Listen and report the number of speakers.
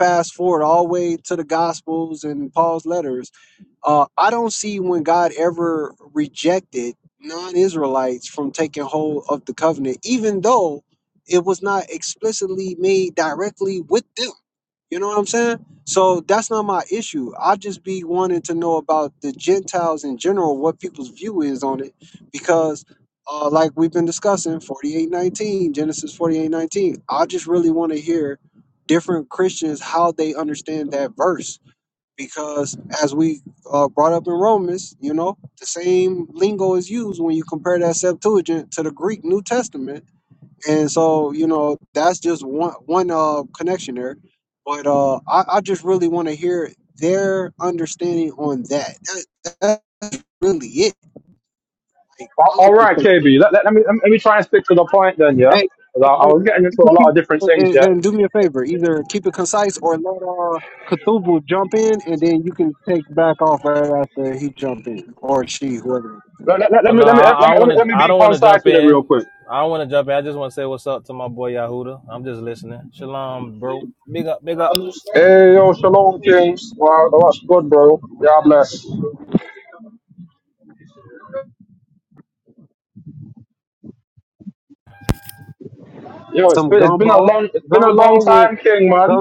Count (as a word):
three